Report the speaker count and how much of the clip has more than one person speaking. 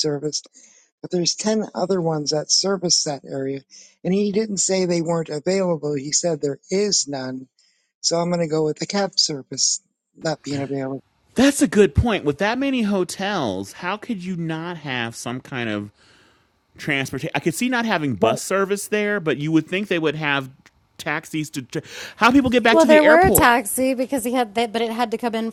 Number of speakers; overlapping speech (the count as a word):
three, about 4%